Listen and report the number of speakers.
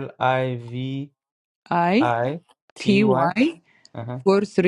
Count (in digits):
2